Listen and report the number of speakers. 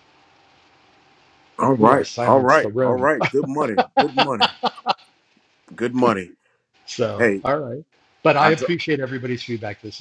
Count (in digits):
2